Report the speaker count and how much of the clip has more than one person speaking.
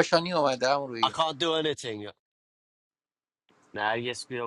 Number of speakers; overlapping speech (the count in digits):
2, about 2%